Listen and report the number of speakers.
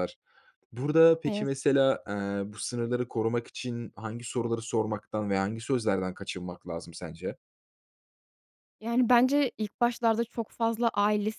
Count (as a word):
two